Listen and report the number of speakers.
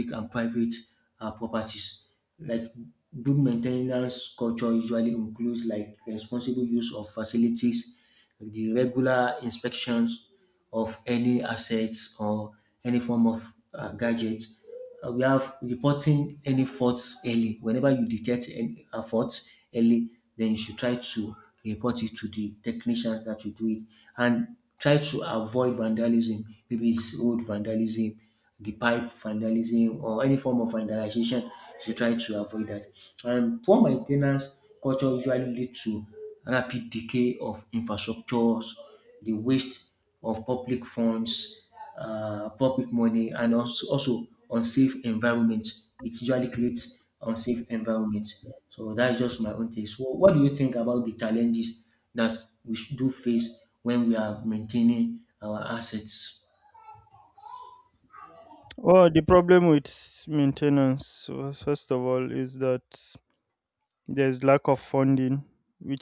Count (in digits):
2